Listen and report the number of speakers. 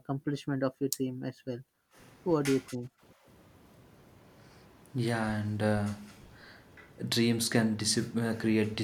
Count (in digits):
2